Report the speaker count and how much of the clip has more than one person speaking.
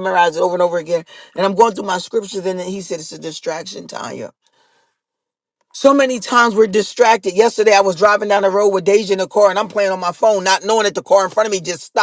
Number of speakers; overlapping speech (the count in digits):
1, no overlap